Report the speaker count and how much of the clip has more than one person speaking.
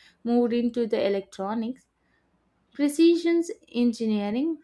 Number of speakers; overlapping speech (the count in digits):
1, no overlap